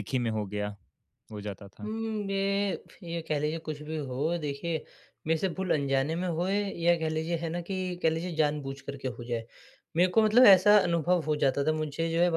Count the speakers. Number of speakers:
2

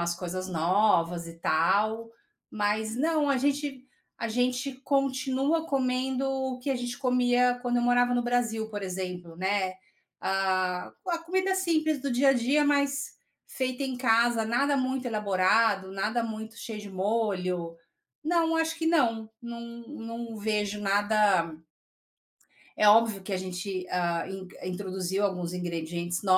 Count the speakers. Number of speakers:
1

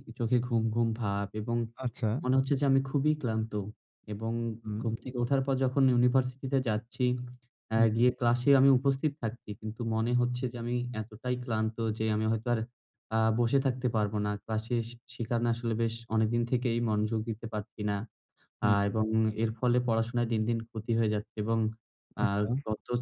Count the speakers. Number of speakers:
2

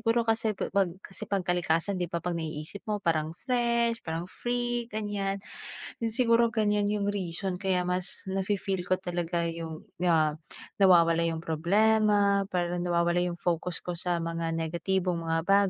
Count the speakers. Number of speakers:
1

